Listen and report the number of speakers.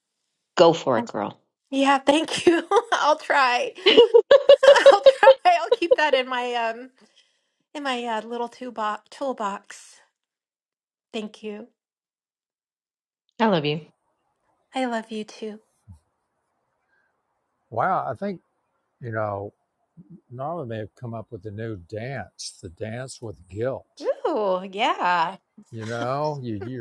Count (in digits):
3